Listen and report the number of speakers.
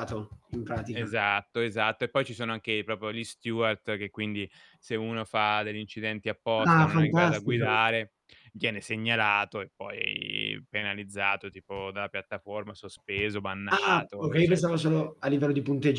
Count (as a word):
two